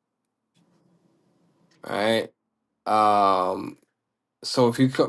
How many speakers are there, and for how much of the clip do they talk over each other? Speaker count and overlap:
1, no overlap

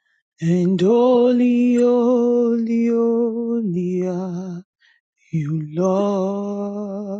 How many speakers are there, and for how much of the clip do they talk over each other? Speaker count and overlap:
1, no overlap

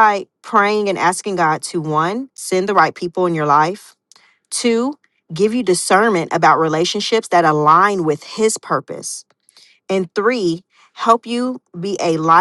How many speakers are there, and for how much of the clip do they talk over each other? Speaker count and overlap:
1, no overlap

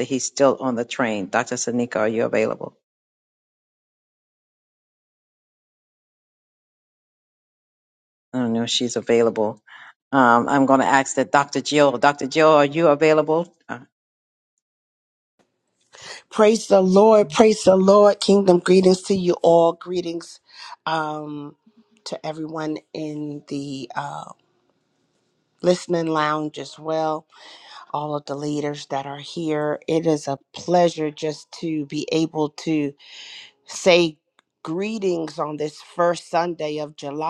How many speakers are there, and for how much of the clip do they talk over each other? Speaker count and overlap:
2, no overlap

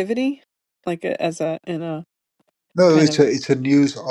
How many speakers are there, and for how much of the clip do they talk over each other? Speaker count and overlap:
2, about 8%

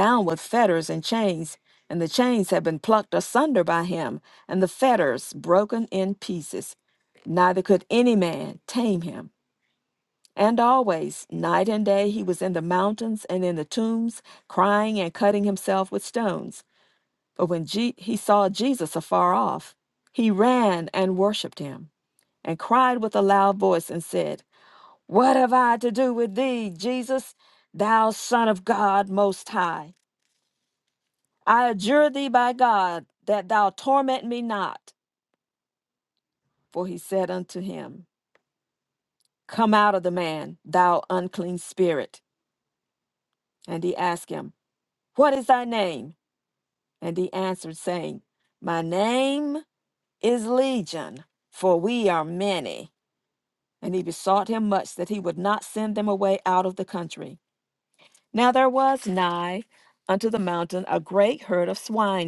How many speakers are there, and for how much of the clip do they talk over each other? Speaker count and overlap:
1, no overlap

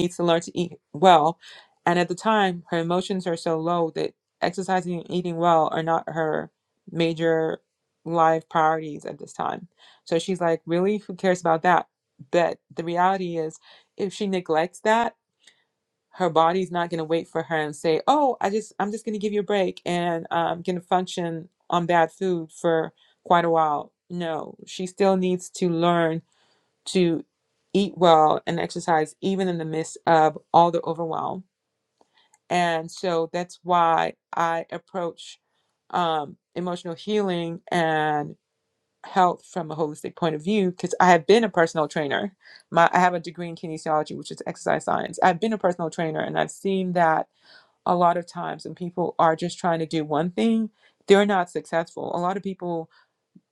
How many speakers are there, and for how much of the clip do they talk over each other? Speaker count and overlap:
1, no overlap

